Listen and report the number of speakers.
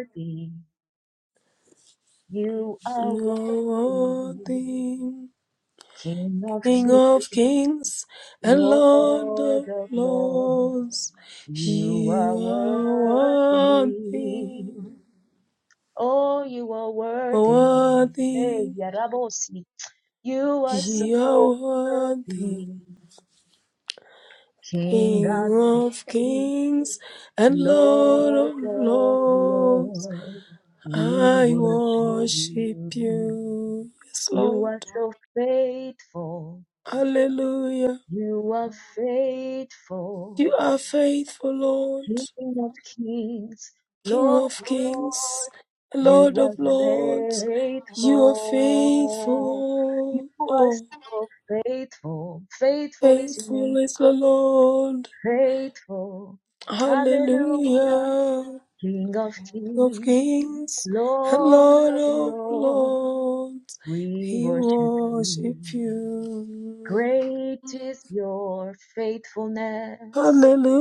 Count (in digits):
2